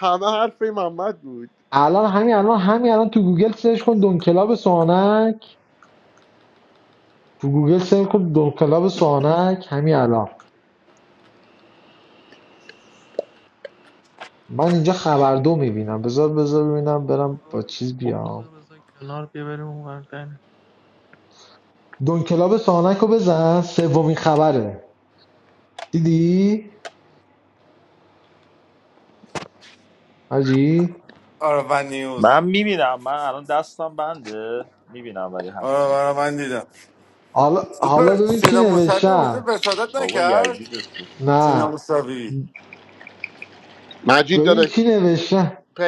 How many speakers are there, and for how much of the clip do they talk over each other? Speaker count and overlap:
five, about 9%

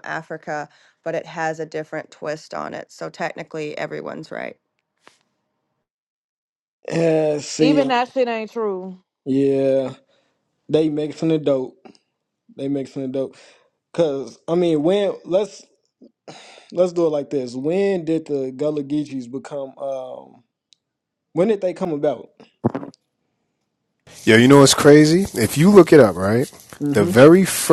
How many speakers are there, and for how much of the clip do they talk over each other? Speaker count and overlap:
four, about 2%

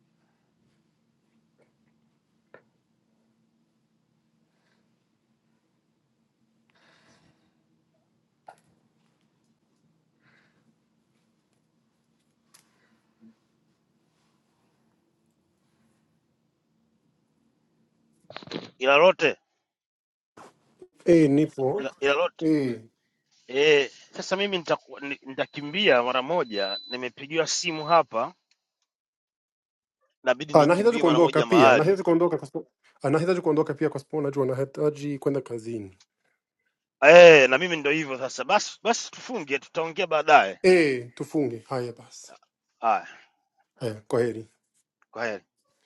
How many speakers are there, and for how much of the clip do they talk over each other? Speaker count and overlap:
two, about 3%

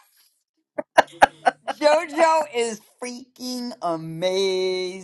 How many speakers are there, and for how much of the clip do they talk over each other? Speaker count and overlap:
one, no overlap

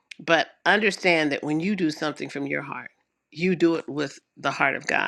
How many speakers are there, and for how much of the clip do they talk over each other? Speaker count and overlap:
one, no overlap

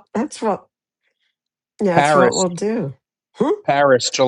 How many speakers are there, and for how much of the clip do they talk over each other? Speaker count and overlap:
two, about 12%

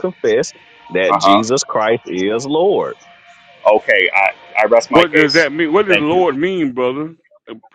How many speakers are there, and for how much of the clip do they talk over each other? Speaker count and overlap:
three, about 14%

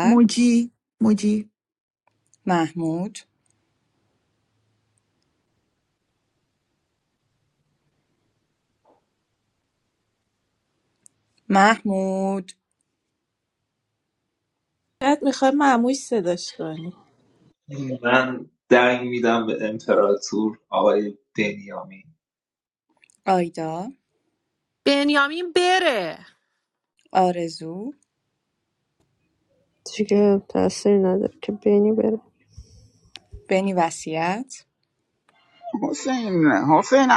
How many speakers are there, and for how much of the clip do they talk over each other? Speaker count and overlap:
seven, under 1%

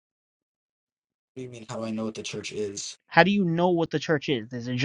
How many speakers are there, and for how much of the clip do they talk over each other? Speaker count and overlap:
two, no overlap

